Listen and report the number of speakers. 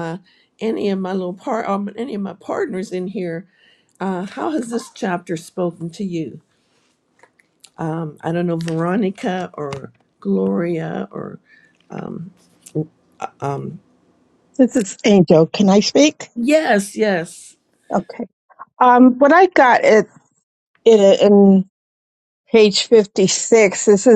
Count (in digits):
2